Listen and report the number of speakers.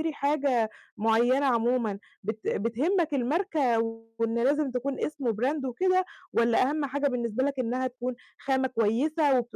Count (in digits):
1